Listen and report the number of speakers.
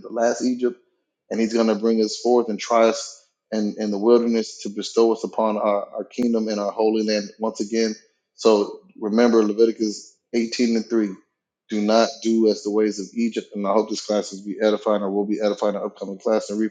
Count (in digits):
1